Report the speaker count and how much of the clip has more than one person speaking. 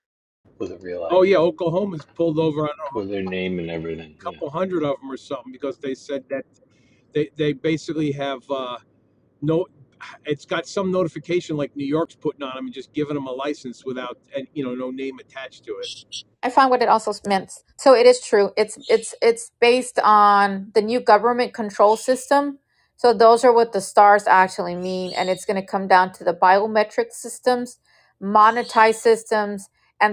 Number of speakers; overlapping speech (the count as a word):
three, about 2%